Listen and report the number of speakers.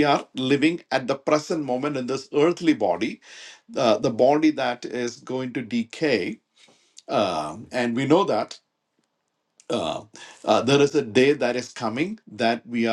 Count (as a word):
one